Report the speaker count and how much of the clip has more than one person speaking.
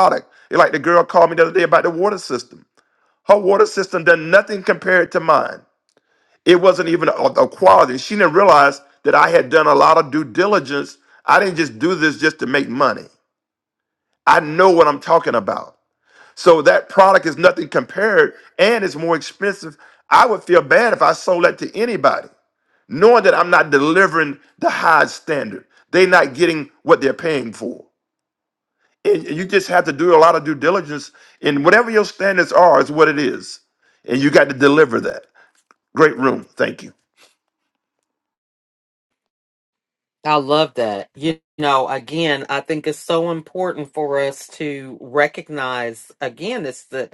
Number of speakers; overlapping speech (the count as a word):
two, no overlap